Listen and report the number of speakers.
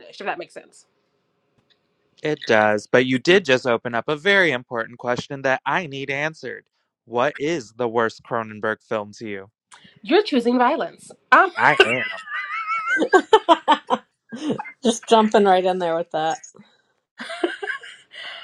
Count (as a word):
three